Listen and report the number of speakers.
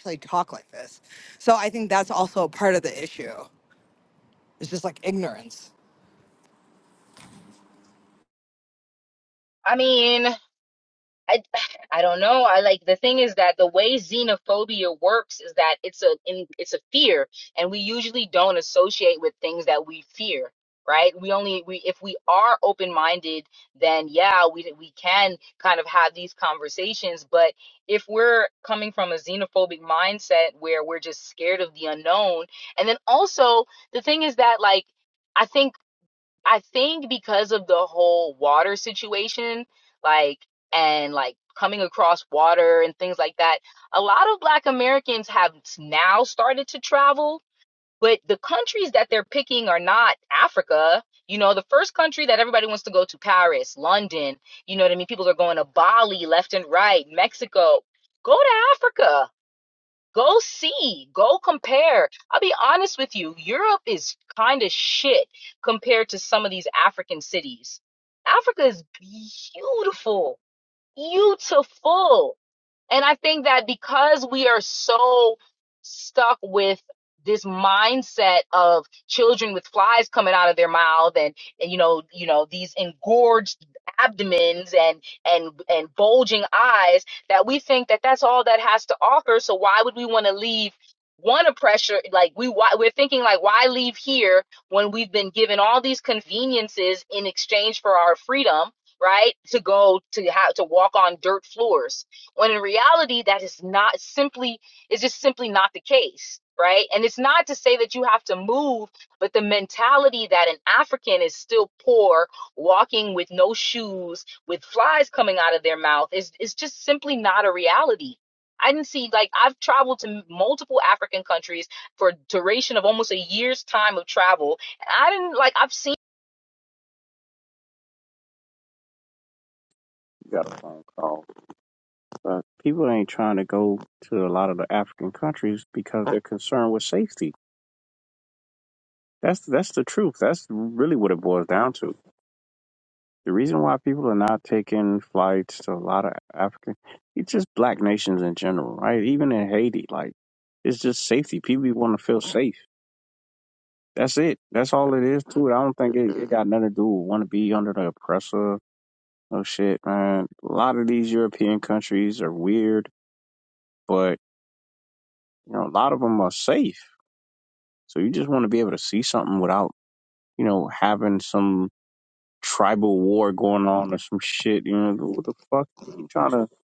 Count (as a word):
three